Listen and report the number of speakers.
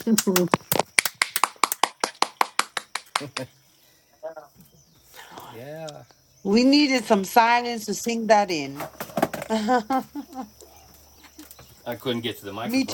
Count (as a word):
two